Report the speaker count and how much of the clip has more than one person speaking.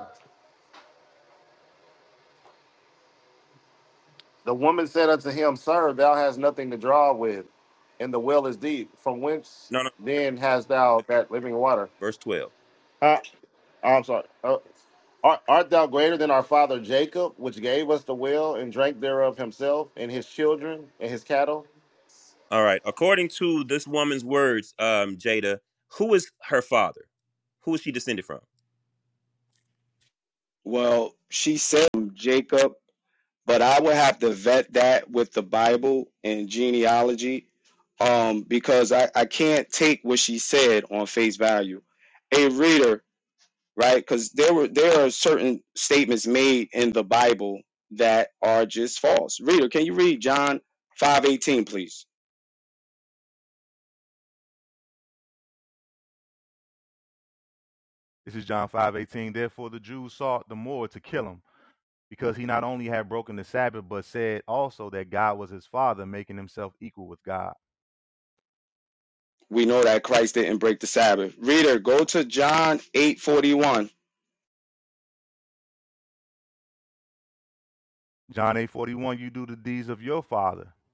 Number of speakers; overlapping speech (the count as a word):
four, no overlap